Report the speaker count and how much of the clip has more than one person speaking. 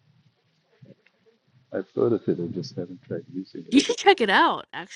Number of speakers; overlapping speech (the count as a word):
two, under 1%